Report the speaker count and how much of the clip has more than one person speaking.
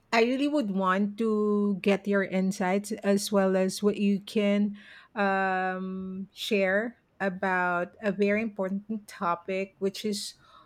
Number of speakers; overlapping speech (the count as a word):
one, no overlap